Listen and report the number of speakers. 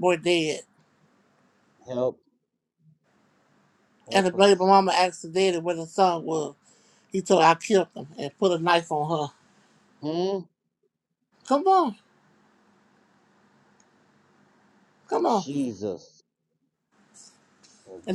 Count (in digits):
2